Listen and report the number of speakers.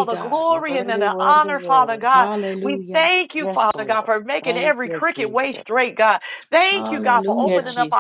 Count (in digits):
3